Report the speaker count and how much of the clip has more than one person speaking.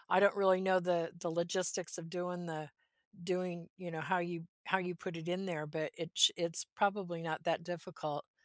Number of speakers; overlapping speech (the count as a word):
one, no overlap